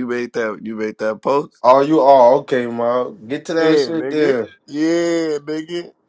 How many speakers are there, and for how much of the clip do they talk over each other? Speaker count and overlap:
three, about 13%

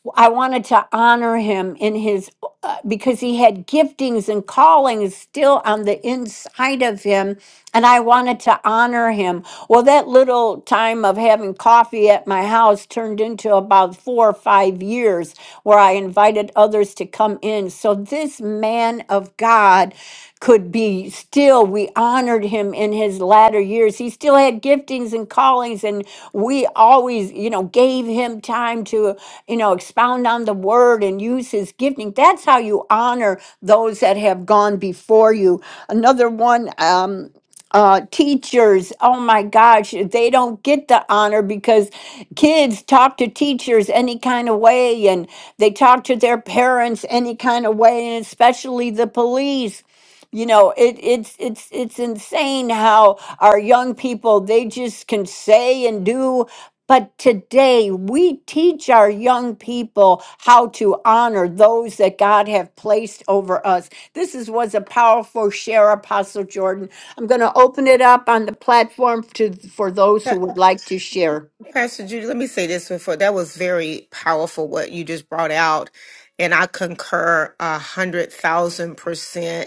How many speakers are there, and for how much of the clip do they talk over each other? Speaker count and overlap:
two, under 1%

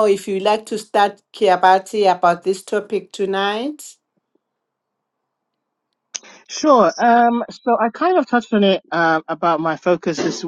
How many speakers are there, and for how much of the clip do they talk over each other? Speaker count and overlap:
two, no overlap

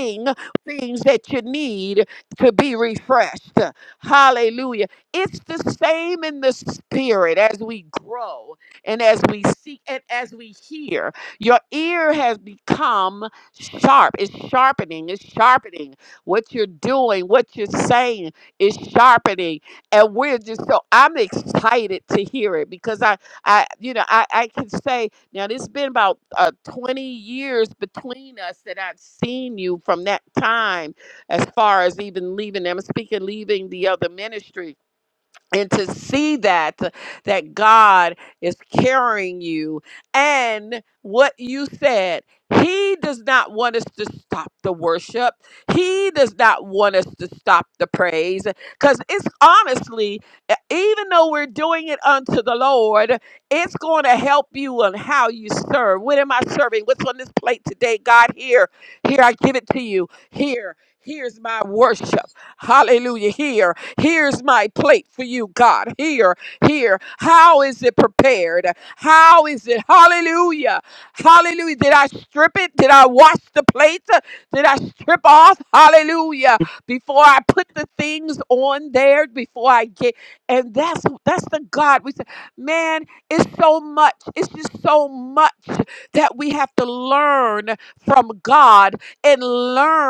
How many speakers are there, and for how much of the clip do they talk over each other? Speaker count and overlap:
one, no overlap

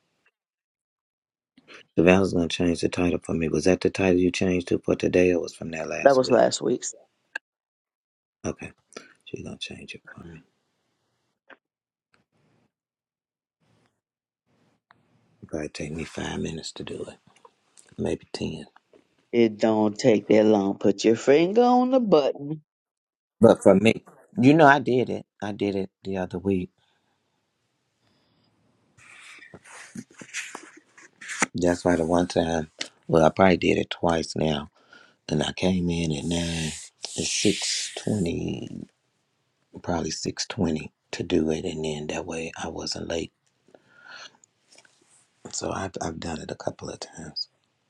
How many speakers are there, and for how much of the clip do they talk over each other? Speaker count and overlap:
two, about 1%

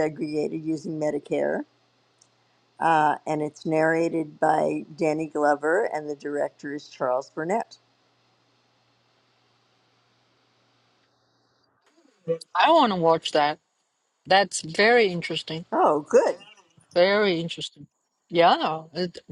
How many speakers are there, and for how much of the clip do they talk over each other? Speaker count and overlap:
two, no overlap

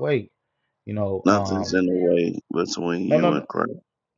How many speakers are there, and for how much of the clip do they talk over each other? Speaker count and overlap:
two, about 22%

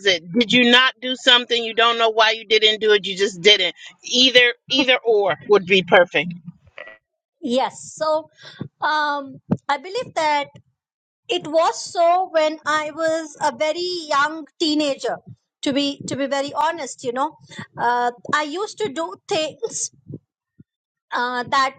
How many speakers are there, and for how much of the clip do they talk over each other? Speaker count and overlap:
two, no overlap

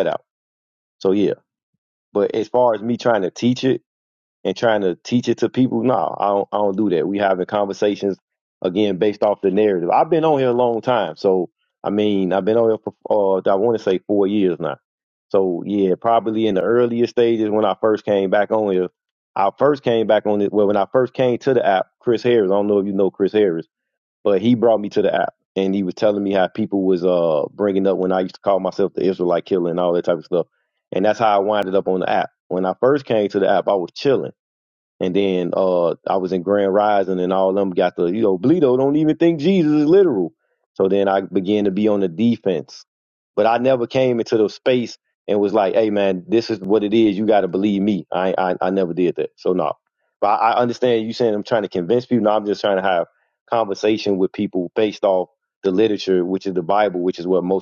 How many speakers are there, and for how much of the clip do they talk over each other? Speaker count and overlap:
one, no overlap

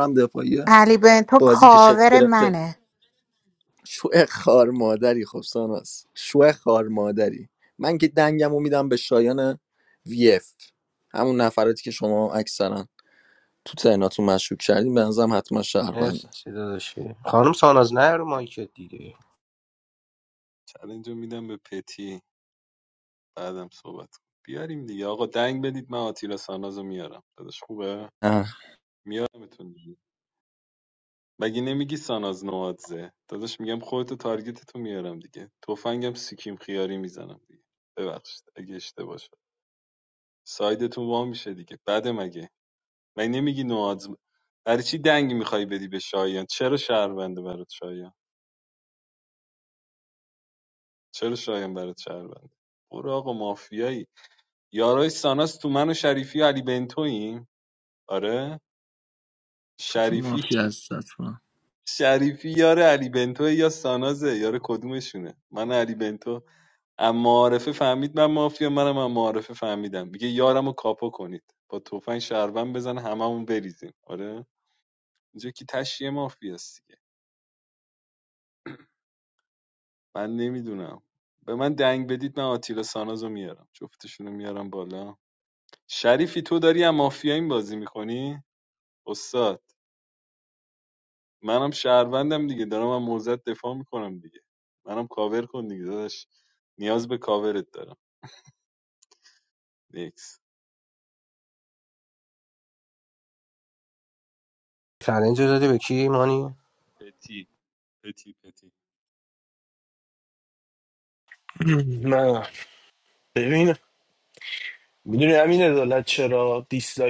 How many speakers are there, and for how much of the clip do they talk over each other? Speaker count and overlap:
five, about 2%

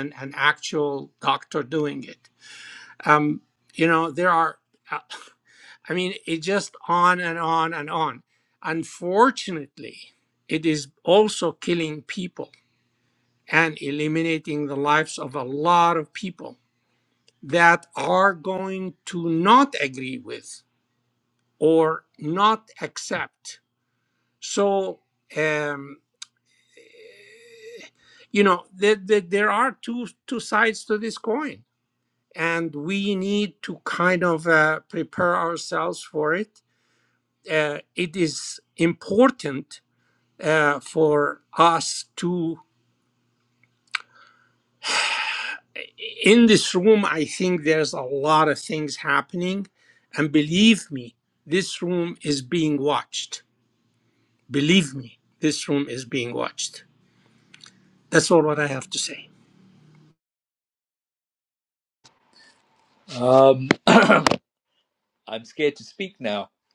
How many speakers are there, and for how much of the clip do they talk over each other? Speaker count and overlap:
two, no overlap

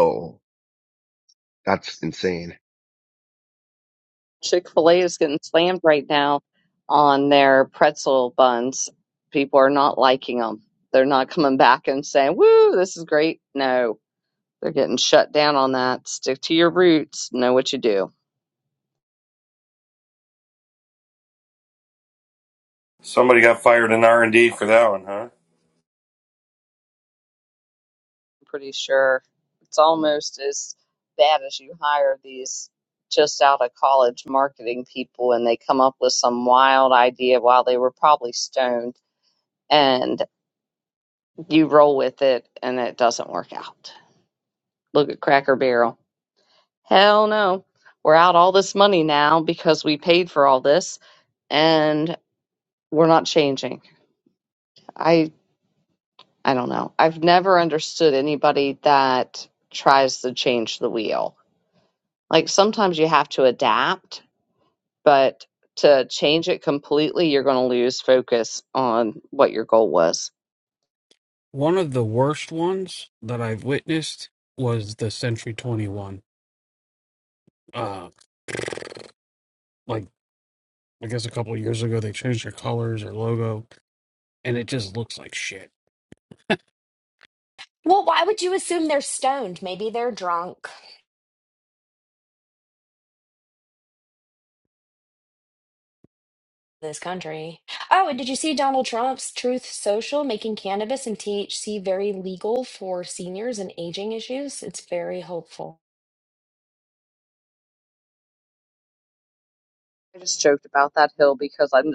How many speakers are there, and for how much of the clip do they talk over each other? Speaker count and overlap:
five, no overlap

